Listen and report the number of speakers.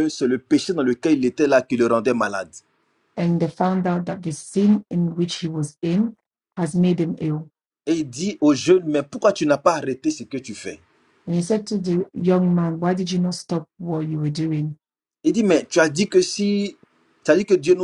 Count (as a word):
two